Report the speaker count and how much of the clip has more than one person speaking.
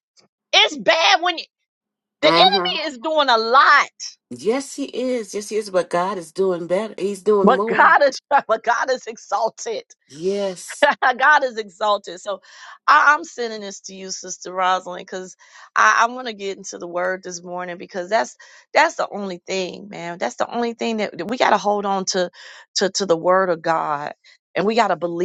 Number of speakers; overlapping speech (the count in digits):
2, about 4%